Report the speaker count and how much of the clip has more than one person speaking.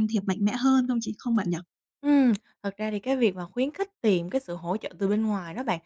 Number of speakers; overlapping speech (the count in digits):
2, no overlap